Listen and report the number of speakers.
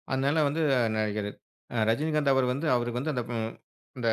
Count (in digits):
1